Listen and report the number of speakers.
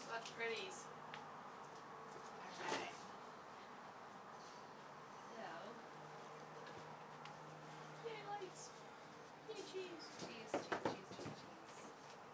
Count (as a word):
two